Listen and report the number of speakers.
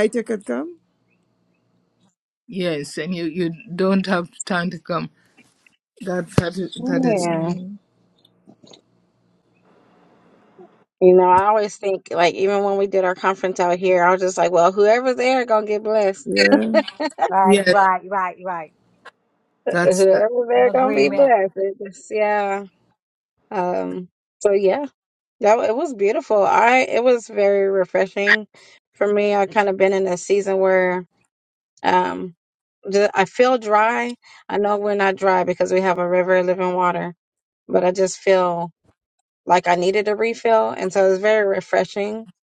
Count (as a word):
four